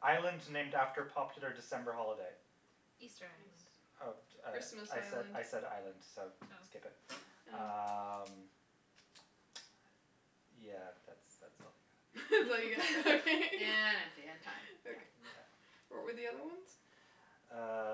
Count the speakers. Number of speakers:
4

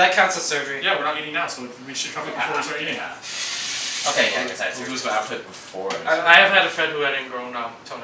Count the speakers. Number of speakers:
4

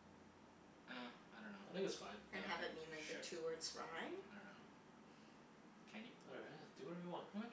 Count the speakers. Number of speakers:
3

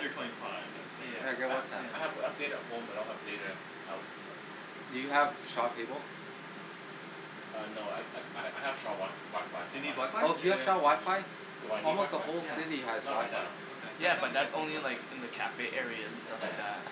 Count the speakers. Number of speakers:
4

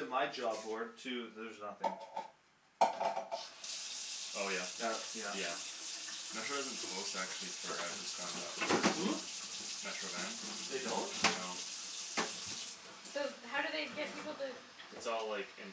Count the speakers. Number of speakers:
3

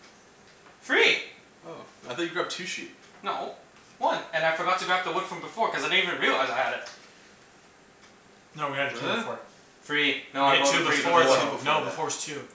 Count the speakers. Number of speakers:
3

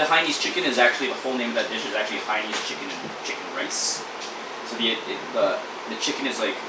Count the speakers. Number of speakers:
1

